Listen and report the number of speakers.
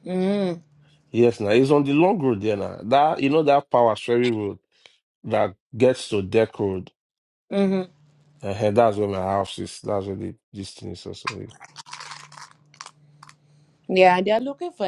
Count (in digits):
2